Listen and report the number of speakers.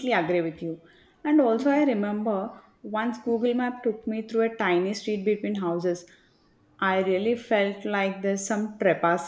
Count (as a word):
one